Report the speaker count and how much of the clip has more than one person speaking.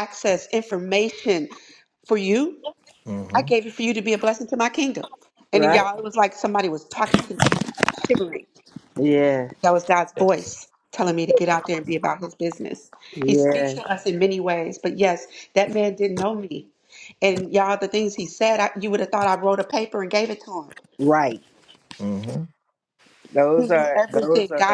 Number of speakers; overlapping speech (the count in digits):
3, about 10%